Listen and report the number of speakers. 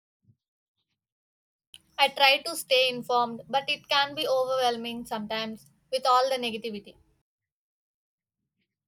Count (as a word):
one